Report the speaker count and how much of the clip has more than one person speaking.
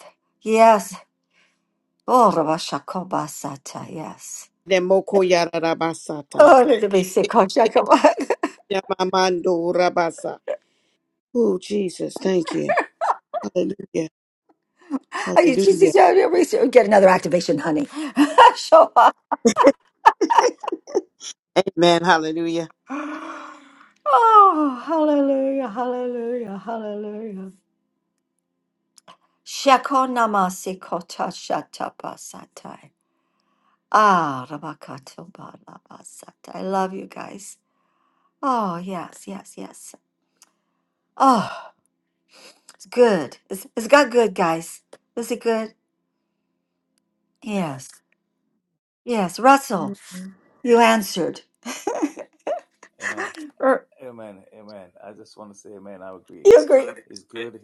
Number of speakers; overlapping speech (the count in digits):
3, about 1%